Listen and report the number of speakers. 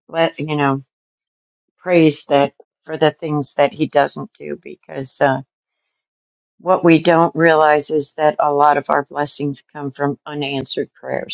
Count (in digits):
1